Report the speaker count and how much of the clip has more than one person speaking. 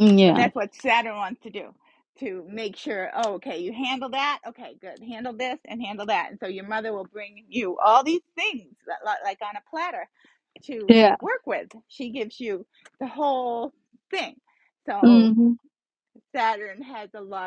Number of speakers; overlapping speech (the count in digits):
2, about 5%